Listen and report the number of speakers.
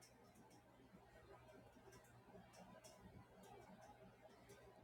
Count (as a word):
zero